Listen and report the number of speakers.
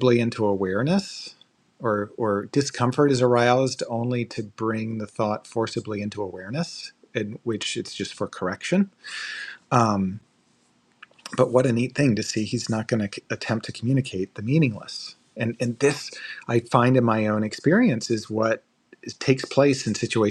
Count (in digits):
1